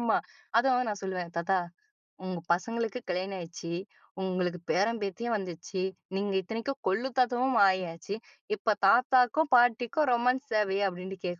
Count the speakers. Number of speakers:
1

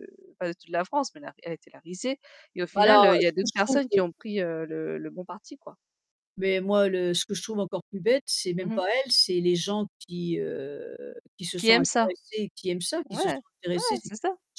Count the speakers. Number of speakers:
2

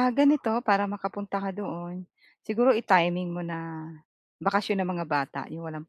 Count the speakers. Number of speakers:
1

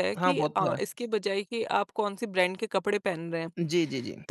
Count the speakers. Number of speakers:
2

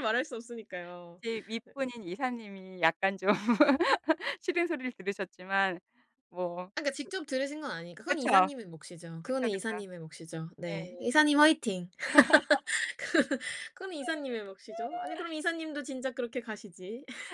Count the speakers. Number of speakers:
2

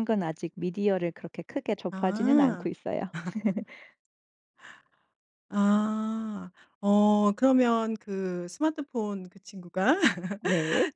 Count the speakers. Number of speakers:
2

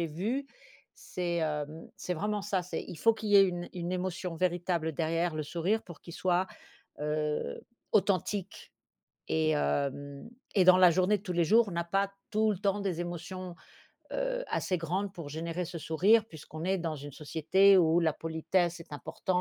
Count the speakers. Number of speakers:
1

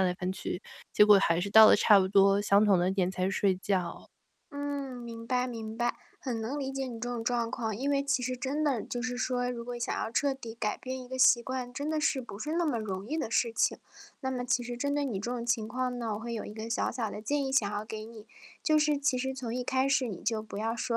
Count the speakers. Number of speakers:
2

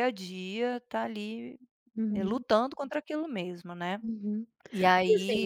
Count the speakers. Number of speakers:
2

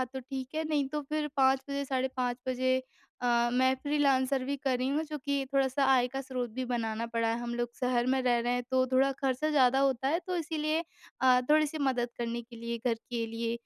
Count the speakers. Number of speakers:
1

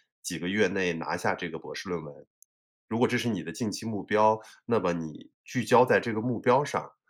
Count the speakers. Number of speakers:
1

